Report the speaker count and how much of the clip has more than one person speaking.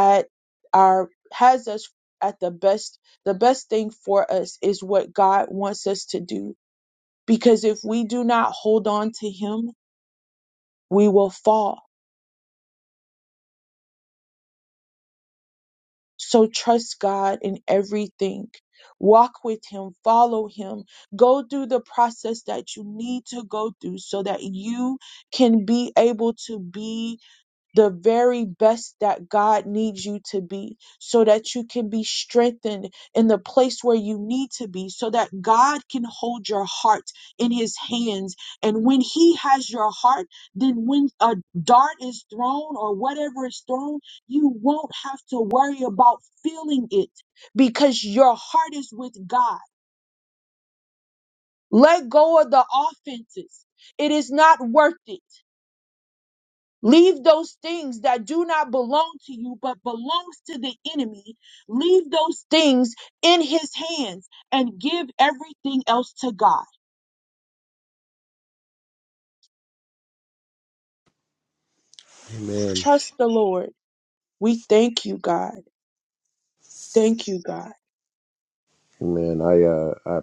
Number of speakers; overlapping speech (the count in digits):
2, under 1%